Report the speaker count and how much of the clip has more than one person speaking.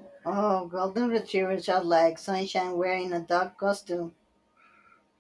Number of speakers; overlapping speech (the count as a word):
one, no overlap